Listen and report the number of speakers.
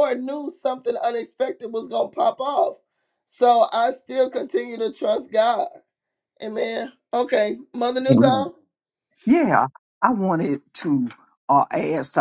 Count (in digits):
2